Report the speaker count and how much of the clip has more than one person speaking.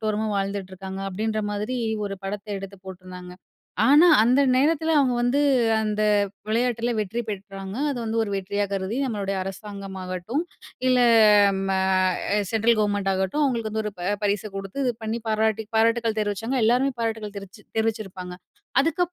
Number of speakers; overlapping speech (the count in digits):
1, no overlap